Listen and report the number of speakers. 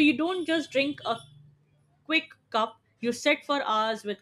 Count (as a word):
one